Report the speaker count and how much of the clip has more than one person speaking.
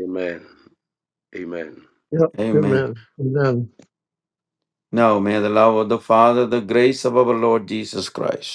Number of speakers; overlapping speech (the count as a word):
three, about 5%